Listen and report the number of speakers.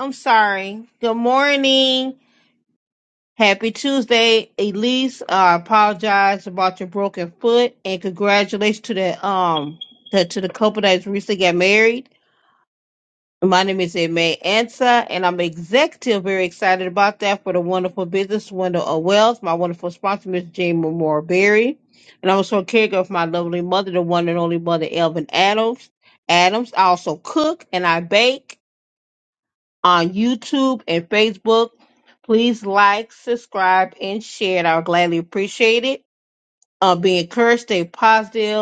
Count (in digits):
1